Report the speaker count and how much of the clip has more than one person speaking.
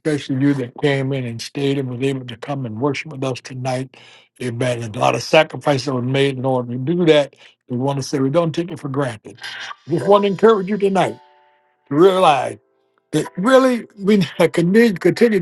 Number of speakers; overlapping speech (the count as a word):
one, no overlap